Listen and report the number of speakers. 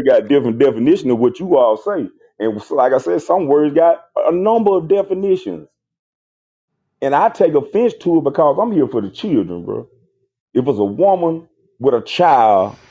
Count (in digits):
1